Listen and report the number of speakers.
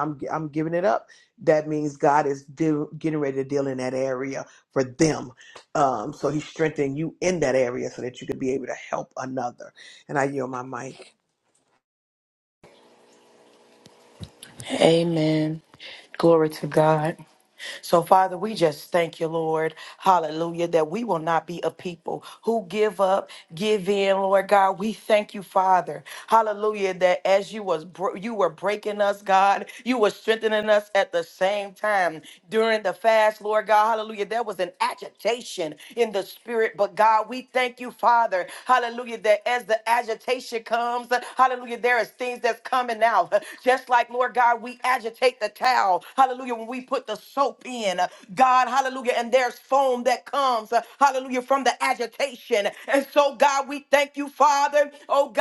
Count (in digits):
2